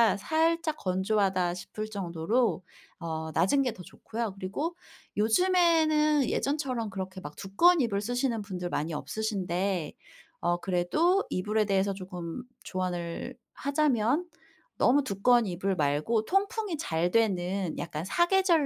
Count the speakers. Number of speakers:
one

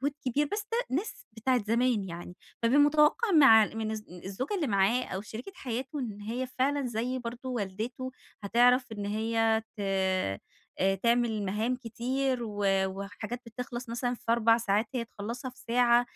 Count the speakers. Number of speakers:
one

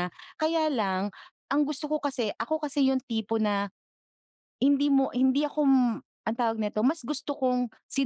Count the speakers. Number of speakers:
one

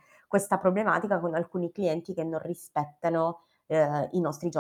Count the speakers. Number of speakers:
one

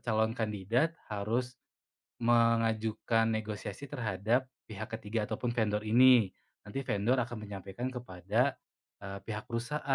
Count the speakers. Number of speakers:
one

